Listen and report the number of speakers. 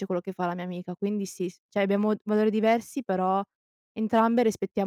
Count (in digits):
1